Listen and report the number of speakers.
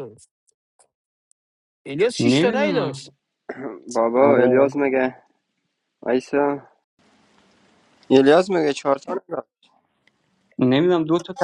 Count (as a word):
three